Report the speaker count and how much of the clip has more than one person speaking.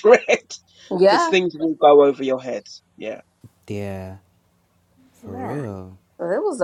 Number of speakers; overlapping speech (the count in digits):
3, about 10%